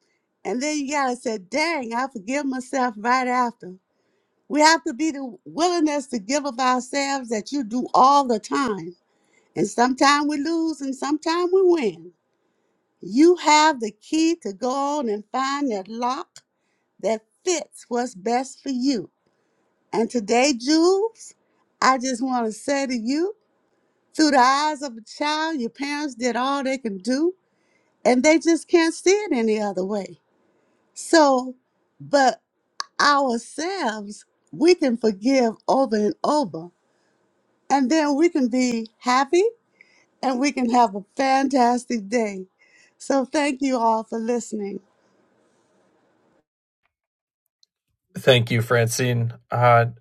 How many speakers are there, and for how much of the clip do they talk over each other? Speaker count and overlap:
two, no overlap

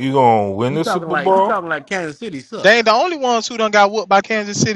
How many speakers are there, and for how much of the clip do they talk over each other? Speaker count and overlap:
three, about 21%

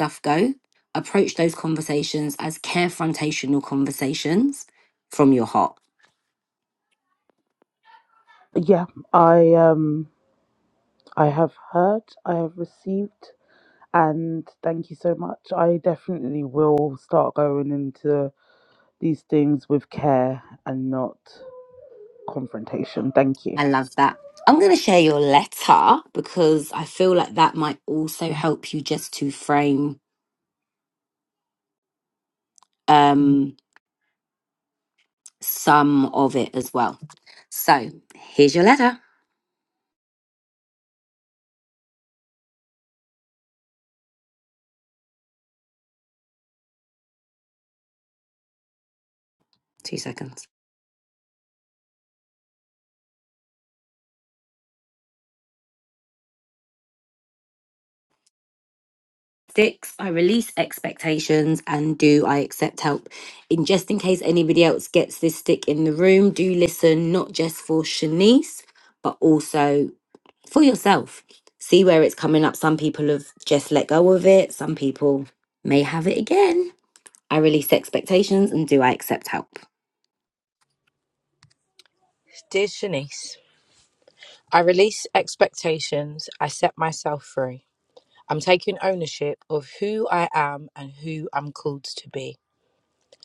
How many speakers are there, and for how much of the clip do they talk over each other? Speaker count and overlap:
three, under 1%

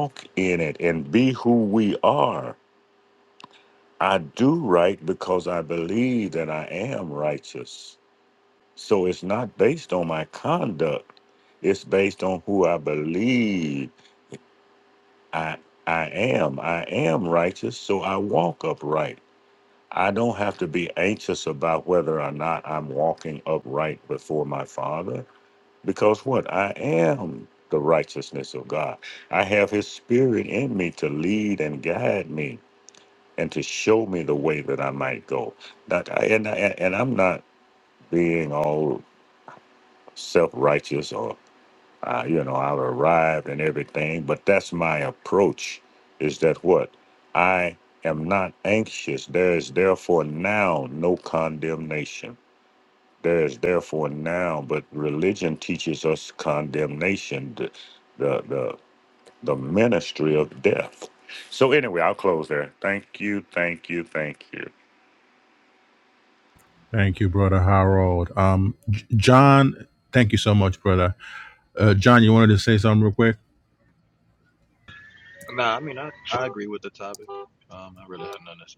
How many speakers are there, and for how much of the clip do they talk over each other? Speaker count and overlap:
three, no overlap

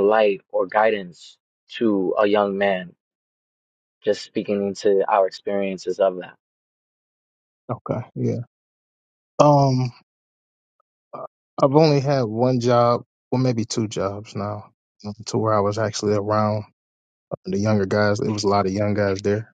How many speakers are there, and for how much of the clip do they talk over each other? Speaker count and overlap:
two, no overlap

